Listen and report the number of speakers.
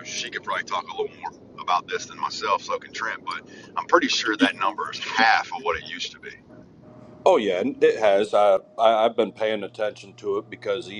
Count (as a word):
two